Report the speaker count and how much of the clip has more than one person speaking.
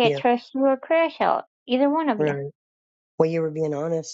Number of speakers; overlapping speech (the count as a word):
two, about 9%